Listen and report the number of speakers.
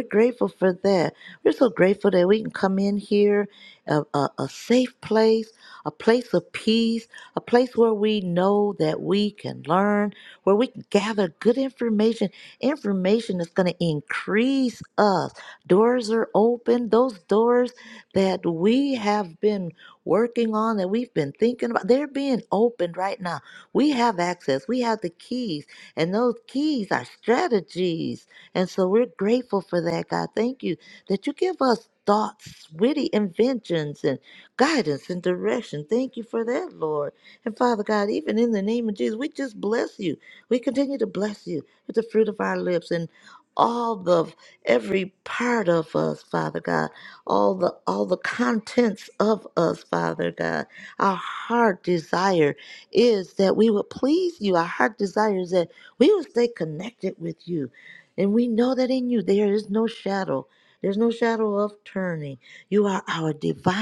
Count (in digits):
1